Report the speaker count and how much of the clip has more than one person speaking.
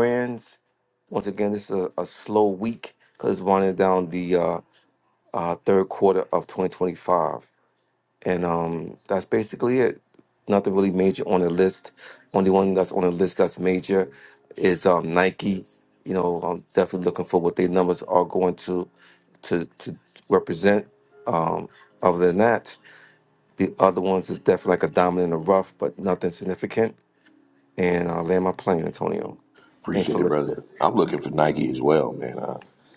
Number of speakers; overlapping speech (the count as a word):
two, about 2%